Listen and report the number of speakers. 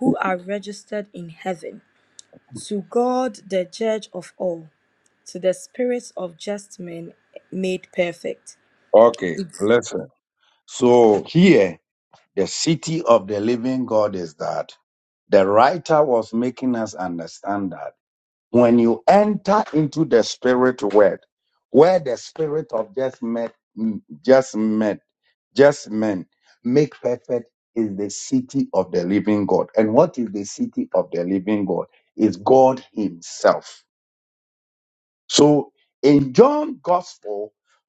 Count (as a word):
two